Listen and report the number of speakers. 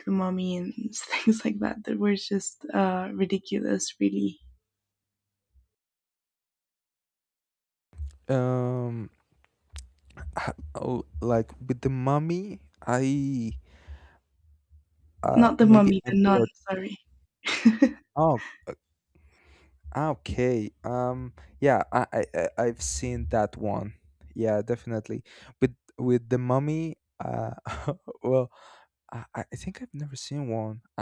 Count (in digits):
2